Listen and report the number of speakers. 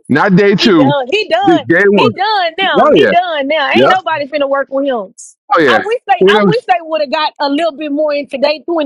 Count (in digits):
2